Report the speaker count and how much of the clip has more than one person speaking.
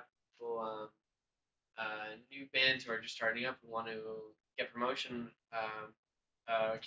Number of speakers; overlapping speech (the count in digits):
1, no overlap